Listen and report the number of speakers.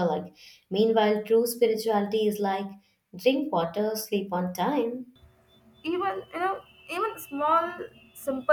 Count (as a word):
two